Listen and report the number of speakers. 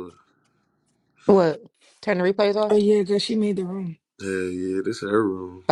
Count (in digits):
3